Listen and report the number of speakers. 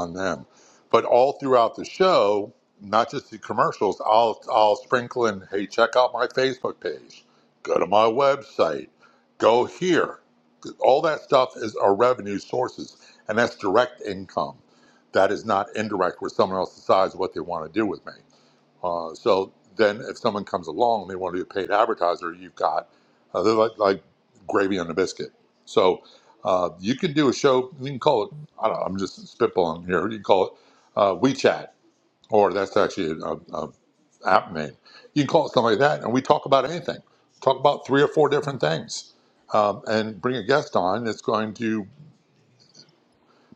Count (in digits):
1